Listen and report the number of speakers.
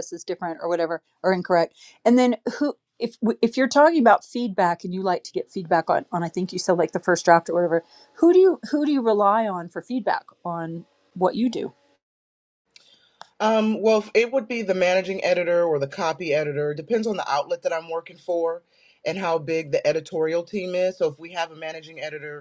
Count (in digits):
2